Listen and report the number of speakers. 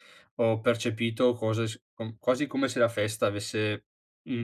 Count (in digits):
1